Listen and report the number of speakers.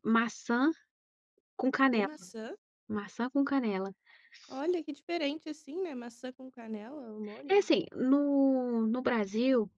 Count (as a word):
two